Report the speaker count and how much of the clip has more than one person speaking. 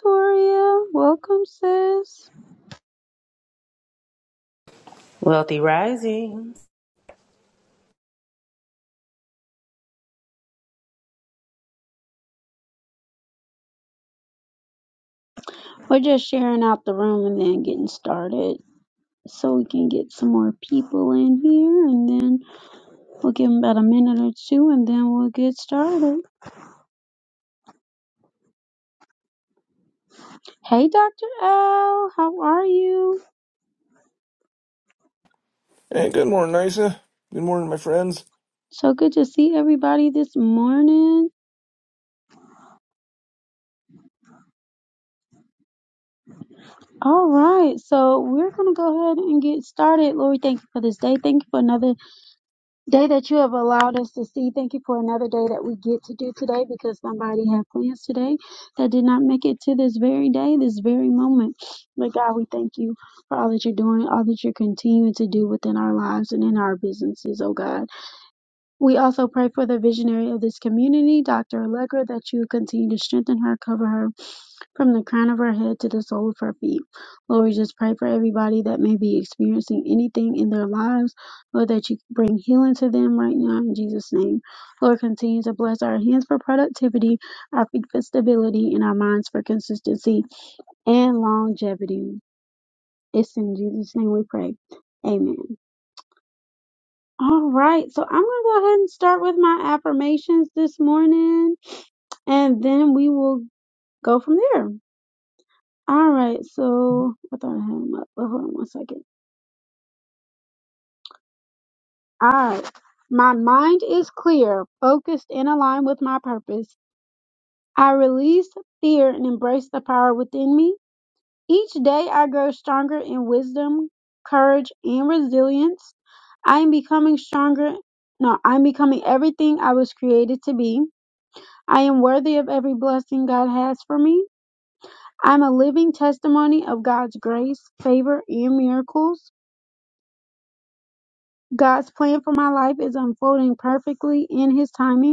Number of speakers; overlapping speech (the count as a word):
three, no overlap